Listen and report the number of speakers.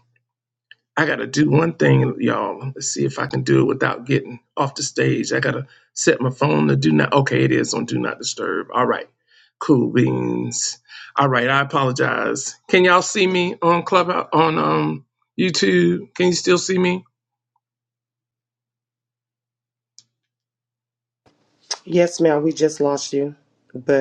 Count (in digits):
2